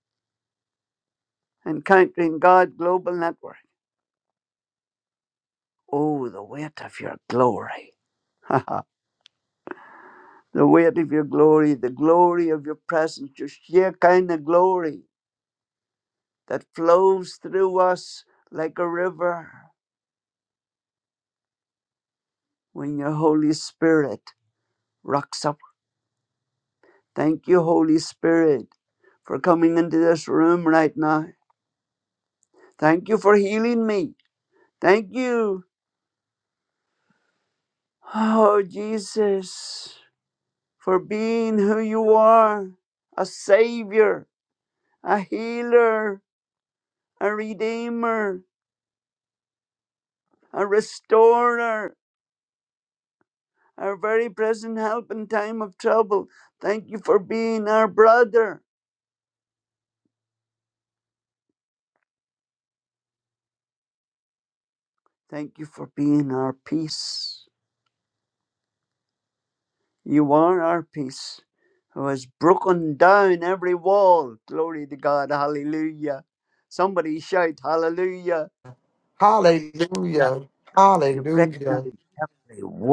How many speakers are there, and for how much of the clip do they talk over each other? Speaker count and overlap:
two, about 1%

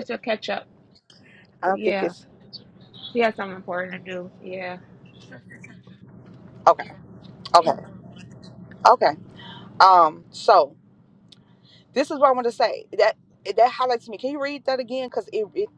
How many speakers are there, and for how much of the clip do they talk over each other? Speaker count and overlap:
two, about 3%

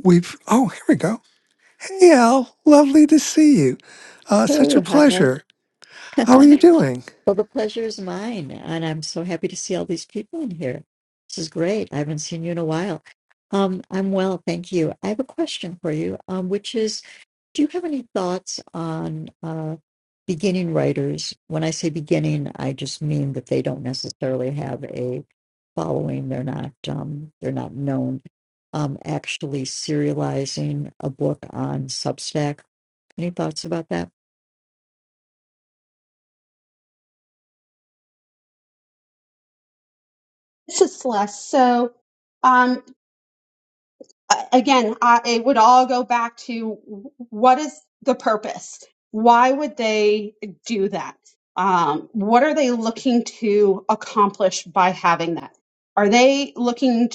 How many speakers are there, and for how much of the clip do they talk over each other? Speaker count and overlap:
three, about 1%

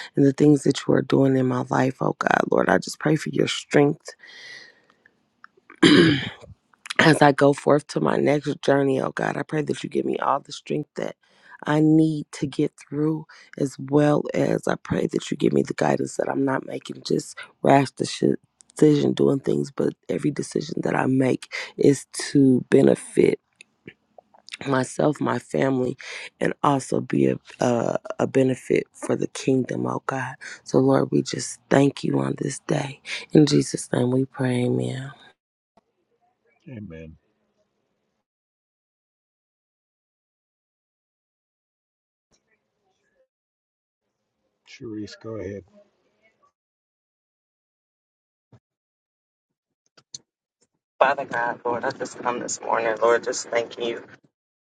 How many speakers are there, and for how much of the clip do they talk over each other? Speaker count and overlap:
three, no overlap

